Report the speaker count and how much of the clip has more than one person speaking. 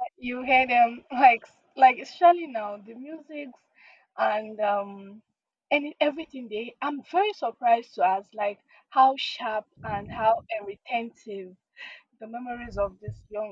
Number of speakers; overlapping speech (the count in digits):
1, no overlap